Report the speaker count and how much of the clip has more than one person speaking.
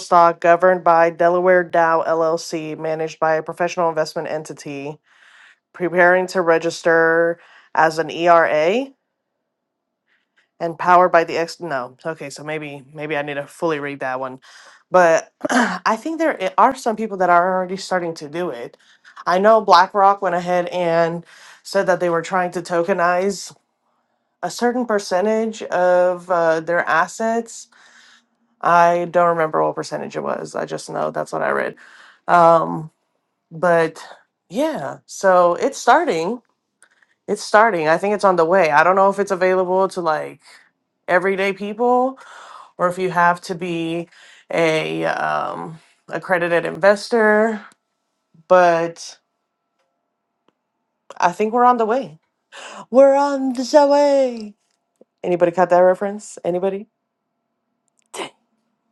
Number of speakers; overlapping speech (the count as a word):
one, no overlap